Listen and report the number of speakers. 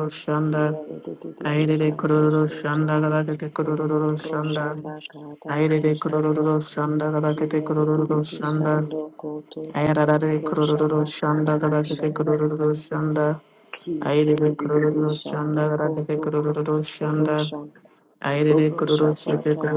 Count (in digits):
2